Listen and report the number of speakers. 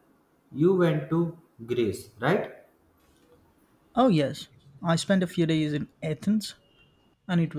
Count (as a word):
two